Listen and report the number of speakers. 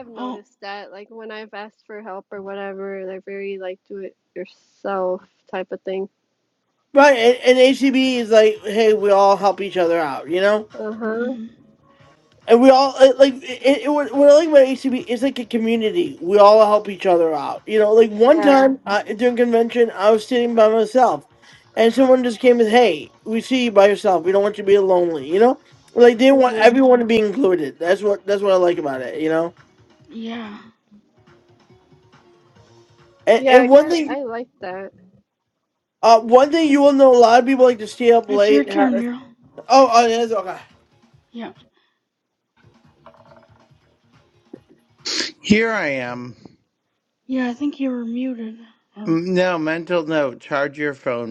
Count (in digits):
4